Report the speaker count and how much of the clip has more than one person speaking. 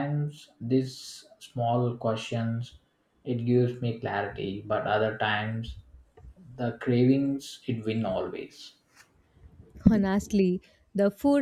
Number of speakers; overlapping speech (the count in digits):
2, no overlap